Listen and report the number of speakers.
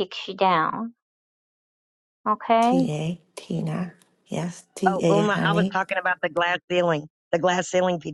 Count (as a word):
three